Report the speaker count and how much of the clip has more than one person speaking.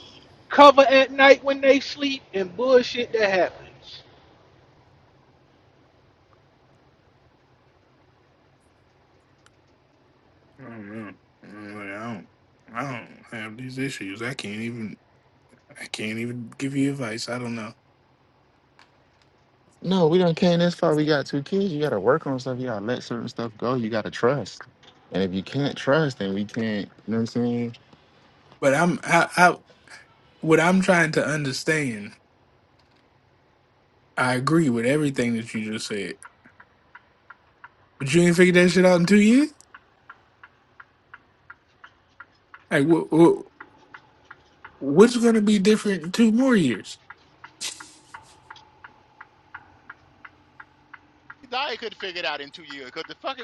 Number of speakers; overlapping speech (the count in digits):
4, no overlap